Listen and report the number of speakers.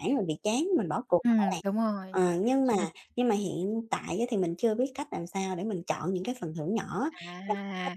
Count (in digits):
2